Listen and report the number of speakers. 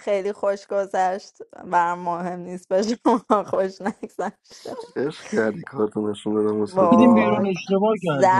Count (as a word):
three